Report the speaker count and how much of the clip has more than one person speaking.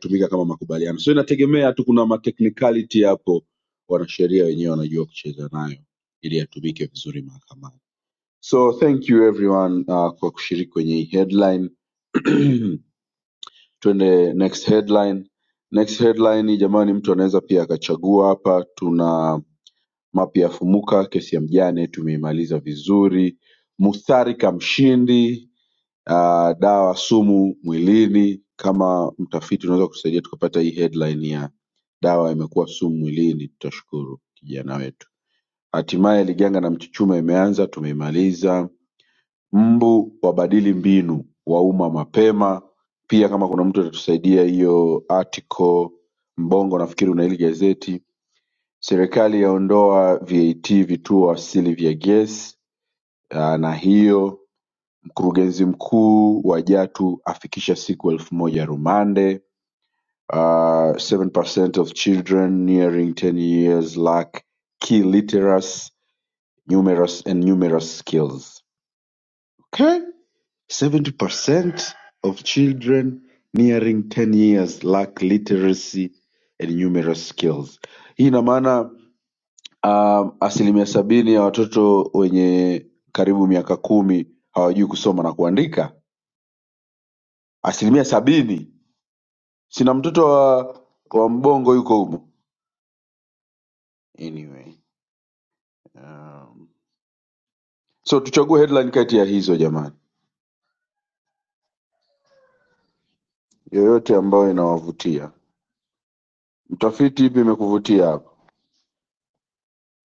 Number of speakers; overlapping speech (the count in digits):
1, no overlap